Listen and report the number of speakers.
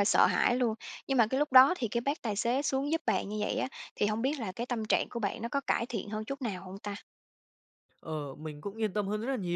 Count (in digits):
2